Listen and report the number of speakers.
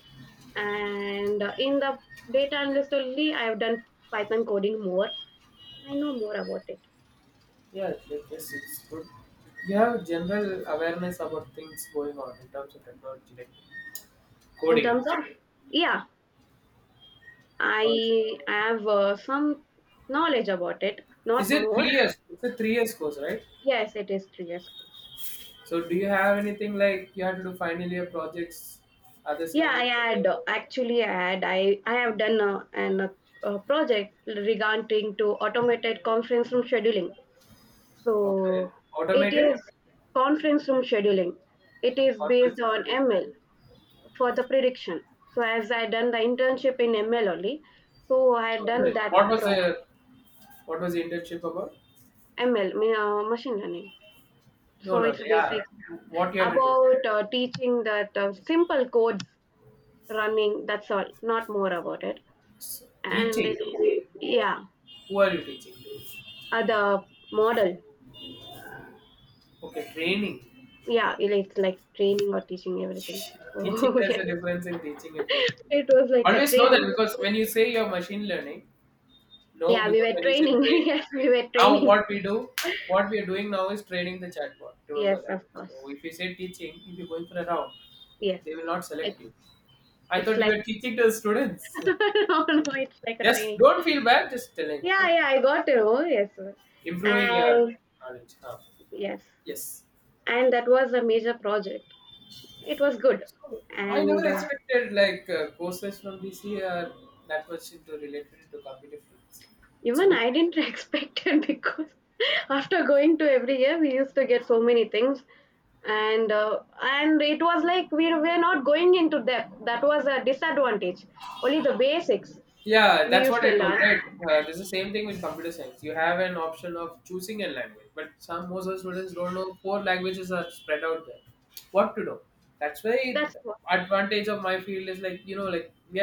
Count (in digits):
2